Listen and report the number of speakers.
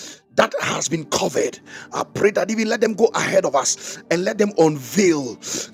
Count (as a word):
one